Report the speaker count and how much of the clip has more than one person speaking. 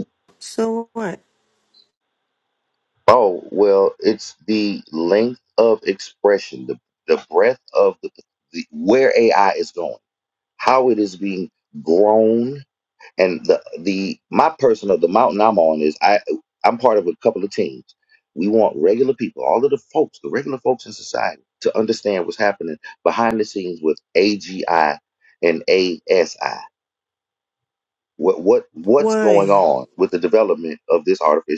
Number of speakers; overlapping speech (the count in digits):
2, about 2%